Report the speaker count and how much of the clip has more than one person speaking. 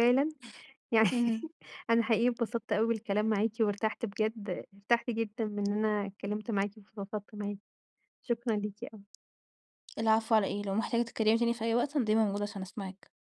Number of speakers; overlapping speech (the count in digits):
2, under 1%